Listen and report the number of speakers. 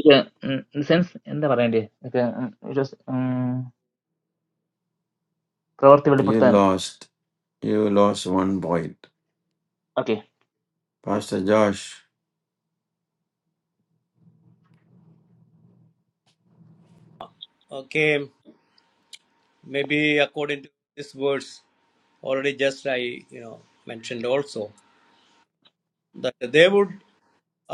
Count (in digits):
3